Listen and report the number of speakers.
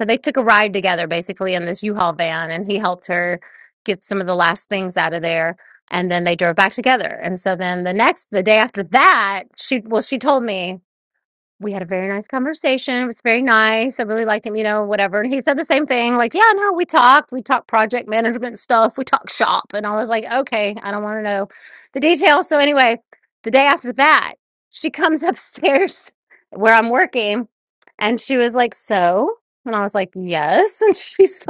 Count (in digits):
1